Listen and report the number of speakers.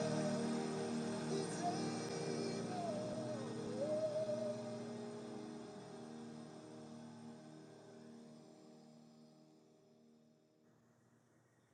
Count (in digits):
0